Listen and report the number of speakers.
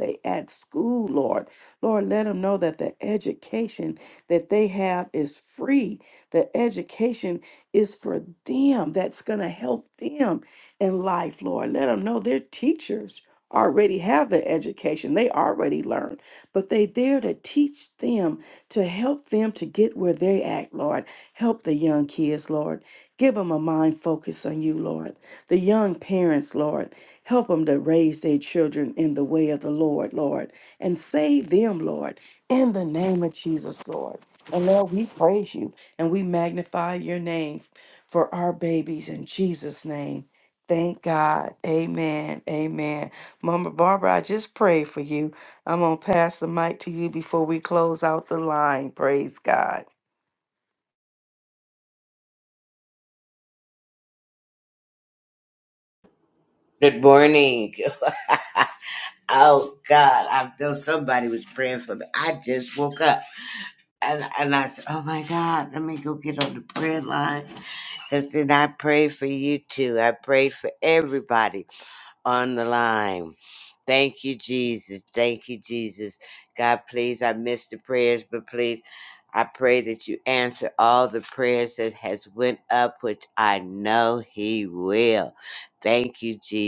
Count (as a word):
two